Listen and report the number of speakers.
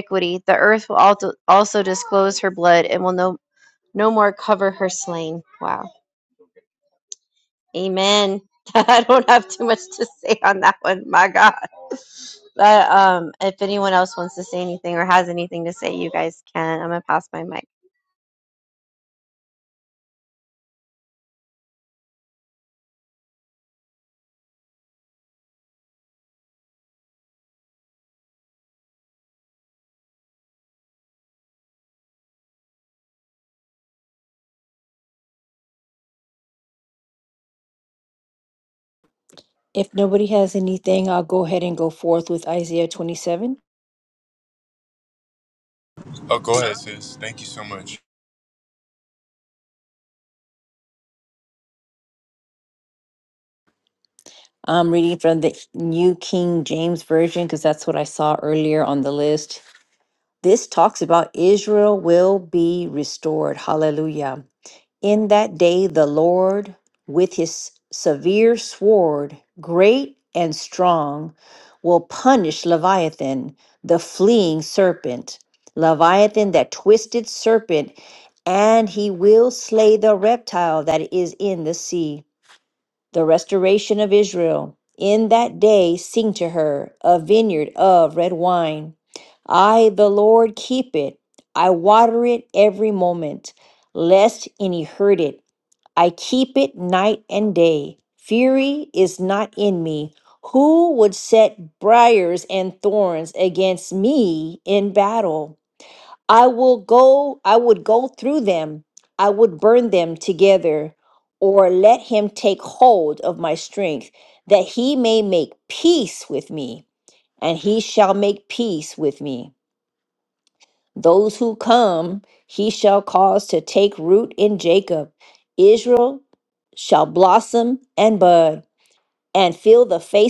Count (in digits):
3